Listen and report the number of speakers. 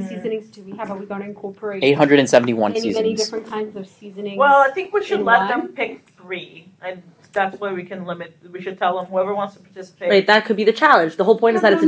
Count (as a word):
four